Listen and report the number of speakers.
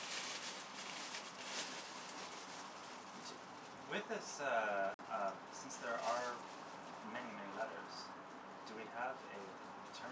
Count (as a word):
one